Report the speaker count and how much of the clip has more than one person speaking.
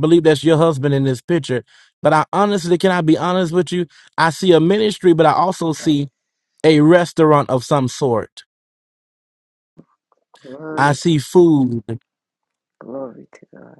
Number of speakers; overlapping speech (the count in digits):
2, about 3%